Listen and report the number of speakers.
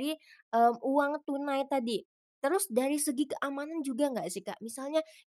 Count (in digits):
1